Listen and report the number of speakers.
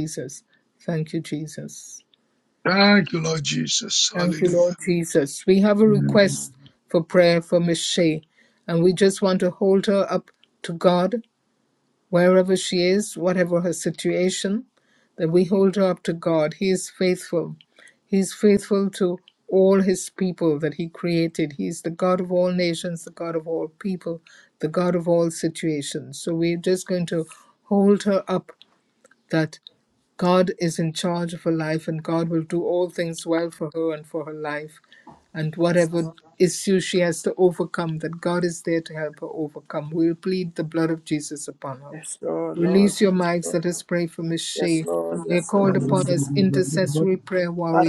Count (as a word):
three